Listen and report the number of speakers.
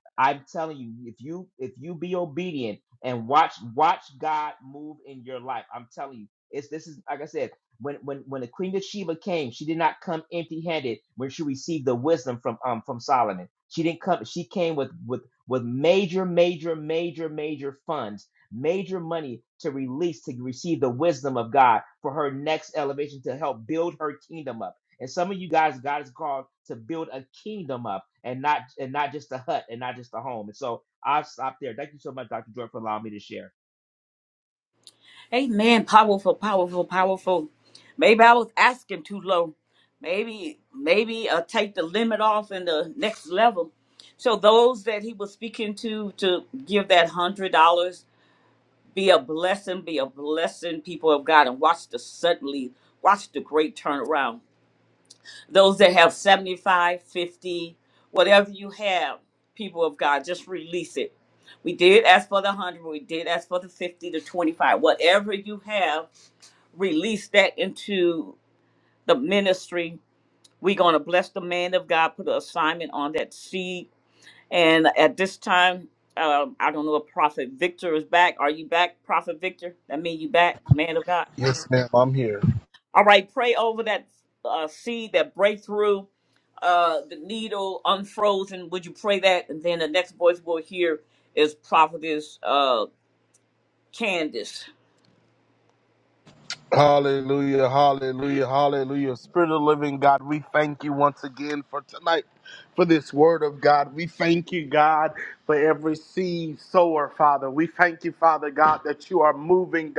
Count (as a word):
three